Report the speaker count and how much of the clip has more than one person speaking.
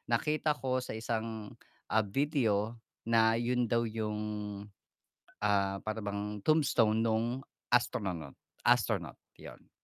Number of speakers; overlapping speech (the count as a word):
one, no overlap